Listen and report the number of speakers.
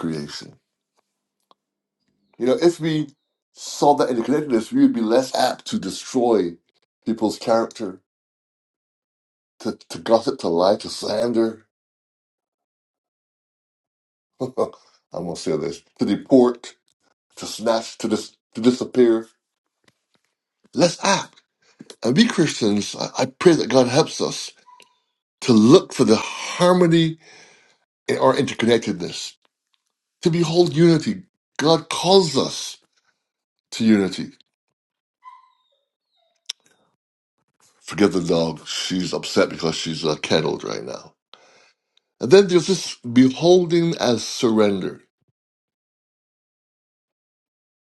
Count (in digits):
1